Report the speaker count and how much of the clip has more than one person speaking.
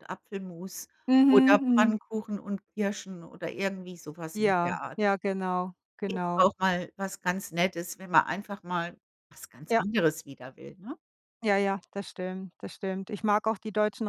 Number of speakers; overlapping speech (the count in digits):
2, about 12%